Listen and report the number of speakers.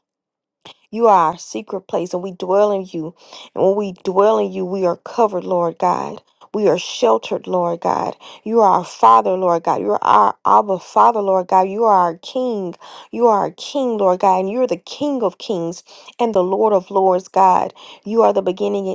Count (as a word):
one